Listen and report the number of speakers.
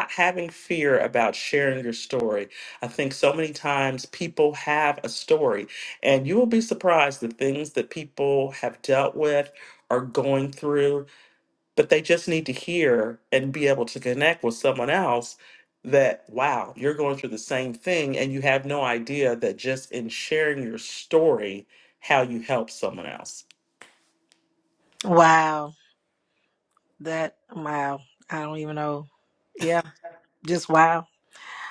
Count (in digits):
2